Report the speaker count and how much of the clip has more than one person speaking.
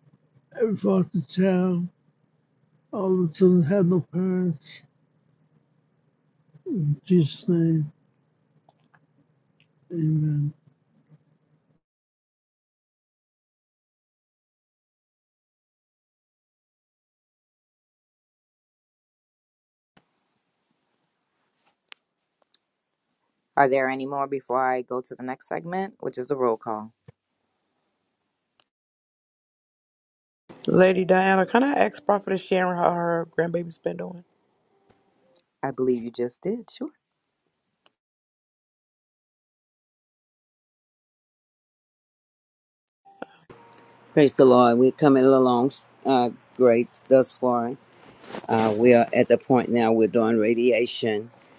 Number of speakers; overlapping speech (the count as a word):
four, no overlap